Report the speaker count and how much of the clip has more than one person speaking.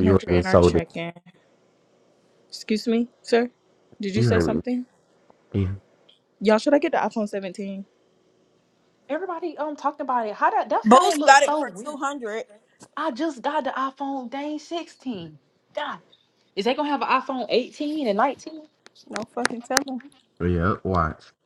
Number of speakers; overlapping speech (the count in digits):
4, about 11%